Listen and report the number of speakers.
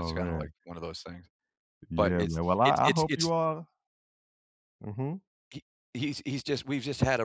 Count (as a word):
two